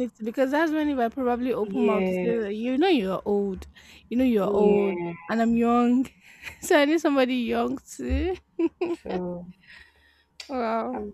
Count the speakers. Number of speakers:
two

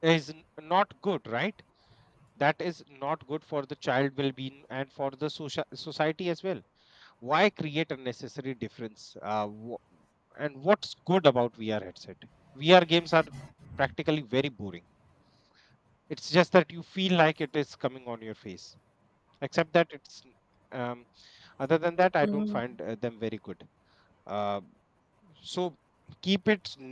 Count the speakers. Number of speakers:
one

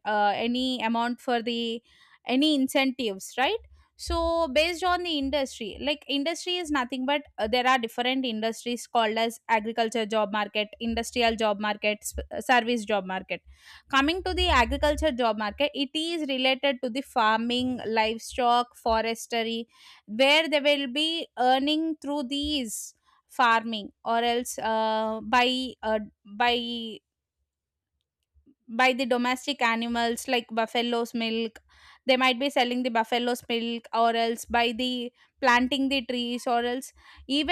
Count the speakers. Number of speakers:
one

